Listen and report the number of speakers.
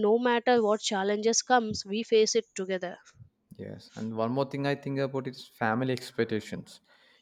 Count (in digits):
2